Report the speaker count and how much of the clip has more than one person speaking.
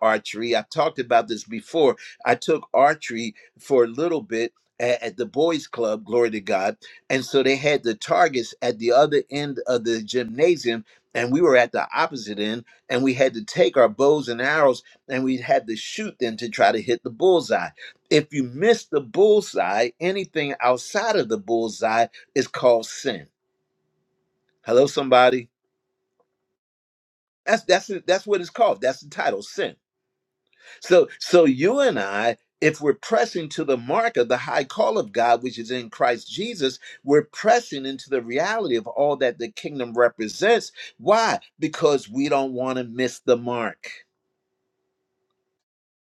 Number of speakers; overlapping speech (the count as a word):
one, no overlap